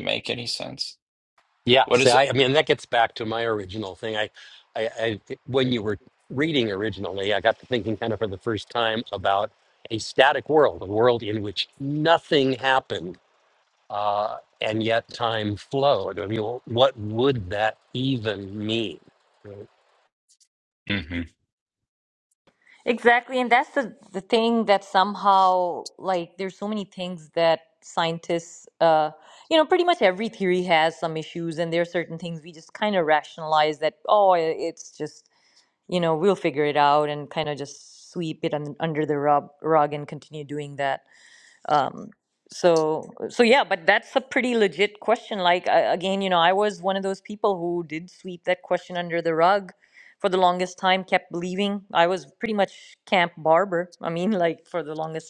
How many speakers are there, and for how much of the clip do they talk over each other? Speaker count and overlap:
three, about 1%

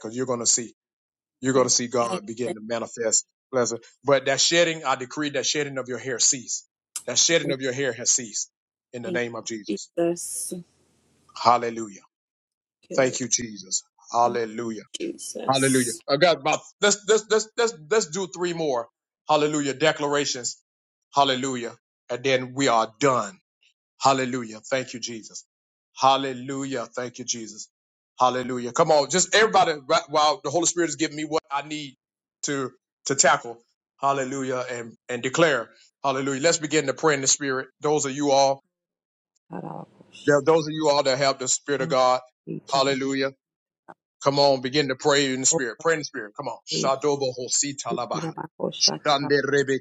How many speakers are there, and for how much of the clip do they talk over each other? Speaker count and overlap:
three, about 5%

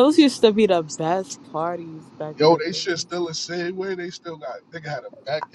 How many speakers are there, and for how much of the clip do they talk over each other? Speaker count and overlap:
two, about 11%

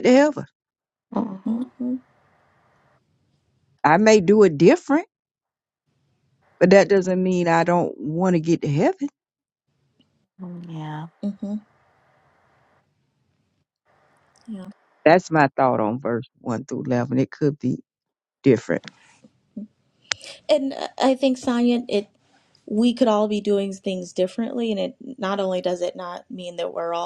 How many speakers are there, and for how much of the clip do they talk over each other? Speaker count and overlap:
three, about 1%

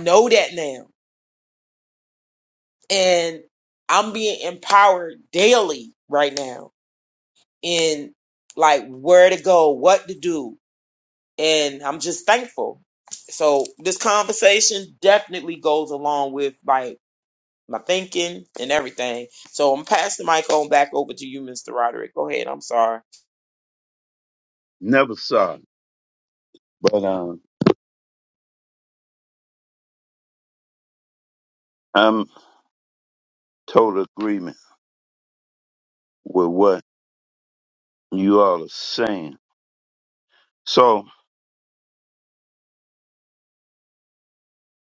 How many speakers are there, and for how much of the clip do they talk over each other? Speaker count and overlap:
two, no overlap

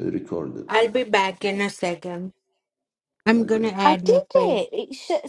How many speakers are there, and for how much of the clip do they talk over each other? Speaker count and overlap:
three, about 23%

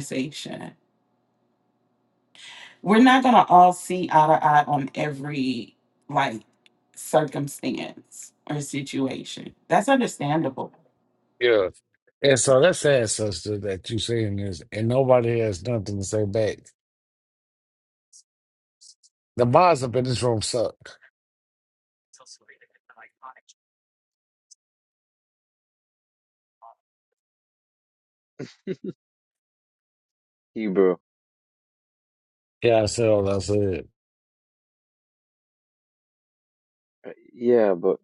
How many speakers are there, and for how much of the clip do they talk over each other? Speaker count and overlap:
three, no overlap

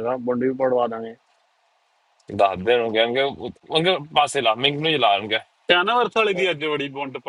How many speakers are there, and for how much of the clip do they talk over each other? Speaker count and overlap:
three, no overlap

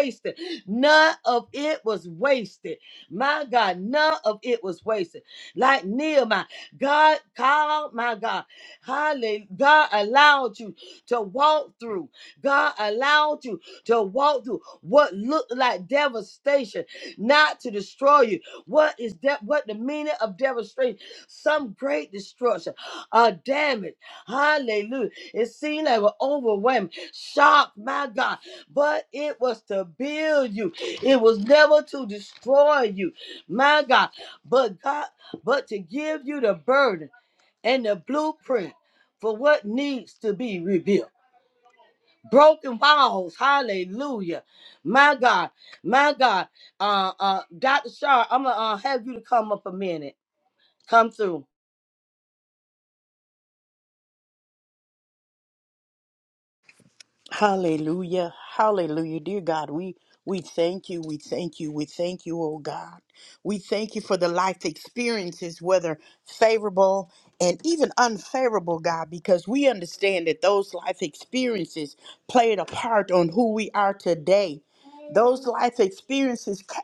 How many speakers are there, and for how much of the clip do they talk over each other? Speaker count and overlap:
two, no overlap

